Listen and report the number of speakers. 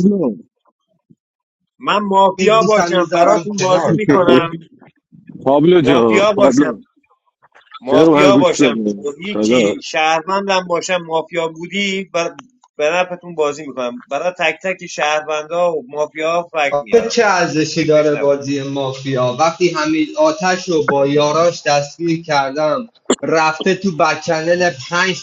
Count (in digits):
3